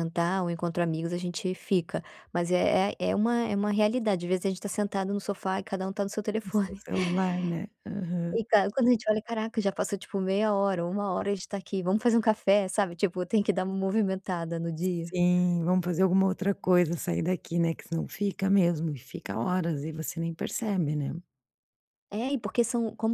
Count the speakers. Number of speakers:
2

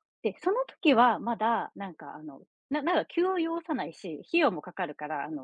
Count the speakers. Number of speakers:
1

